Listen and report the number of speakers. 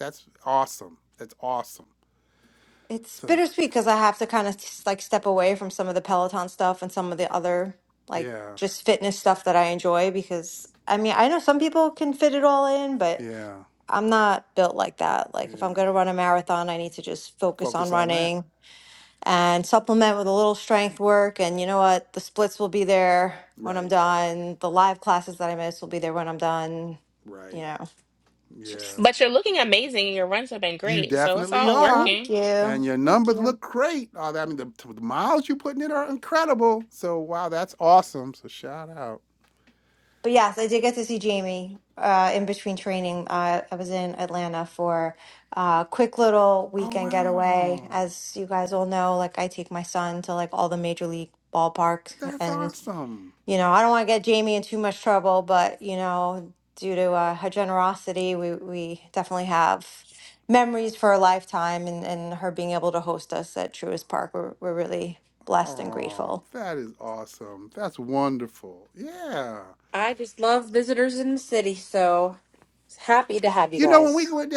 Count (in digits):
4